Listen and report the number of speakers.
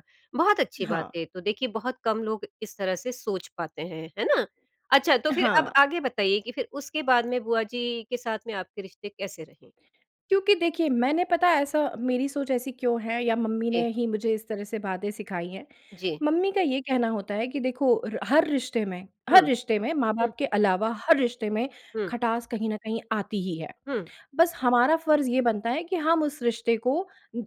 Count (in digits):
2